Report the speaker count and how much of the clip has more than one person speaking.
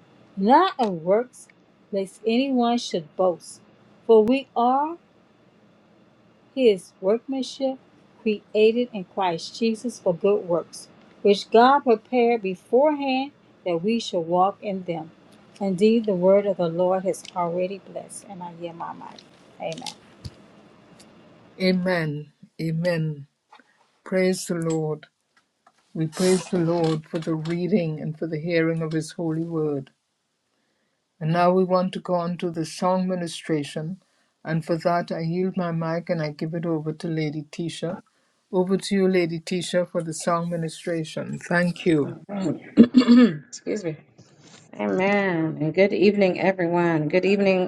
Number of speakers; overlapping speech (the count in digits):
3, no overlap